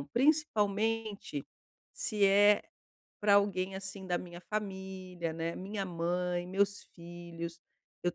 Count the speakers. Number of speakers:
1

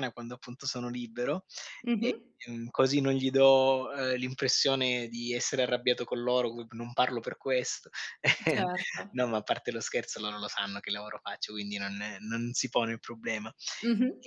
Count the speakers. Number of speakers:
2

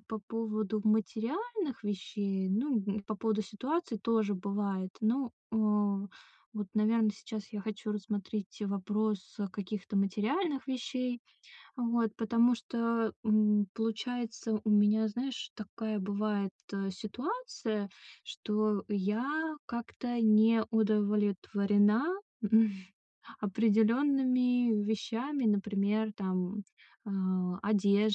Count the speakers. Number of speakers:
1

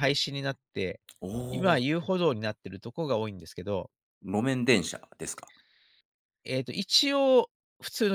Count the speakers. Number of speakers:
2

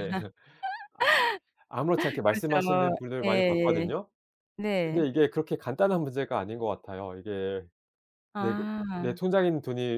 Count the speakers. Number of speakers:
2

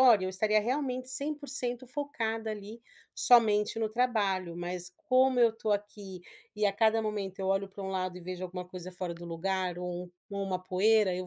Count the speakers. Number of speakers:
1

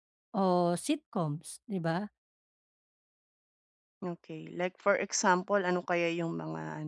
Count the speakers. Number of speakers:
2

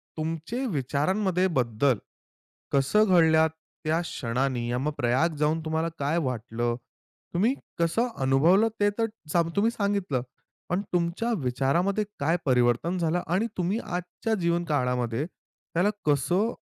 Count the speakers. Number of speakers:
1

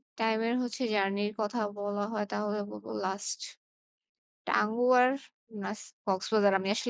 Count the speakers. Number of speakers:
1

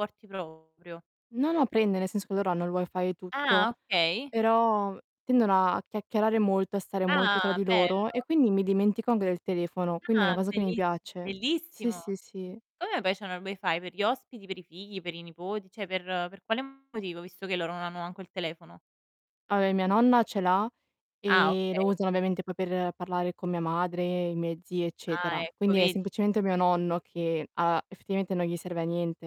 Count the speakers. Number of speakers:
2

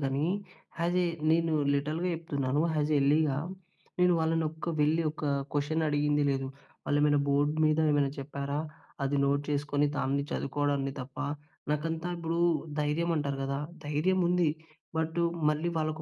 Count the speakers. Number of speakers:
1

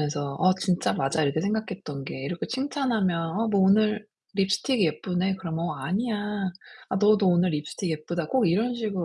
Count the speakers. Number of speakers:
1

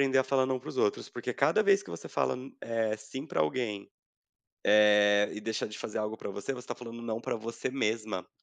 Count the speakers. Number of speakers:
1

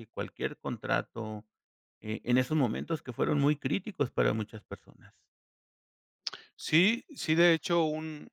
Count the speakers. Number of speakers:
2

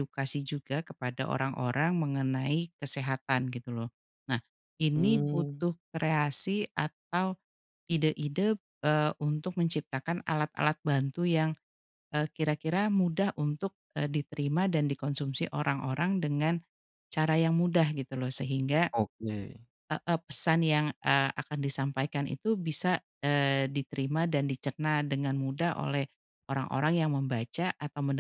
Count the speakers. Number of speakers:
2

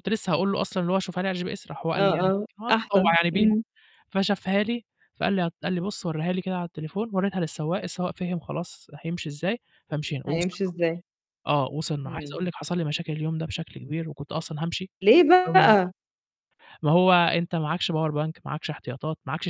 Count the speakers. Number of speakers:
2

